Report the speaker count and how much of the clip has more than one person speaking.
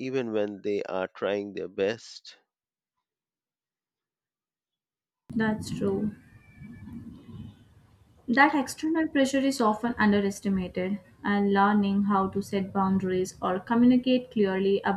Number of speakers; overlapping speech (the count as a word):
two, no overlap